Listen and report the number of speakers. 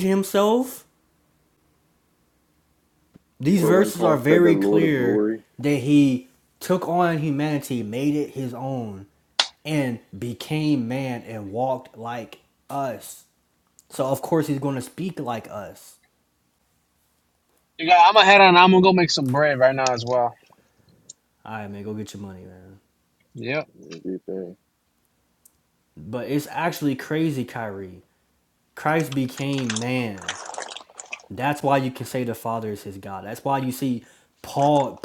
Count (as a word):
three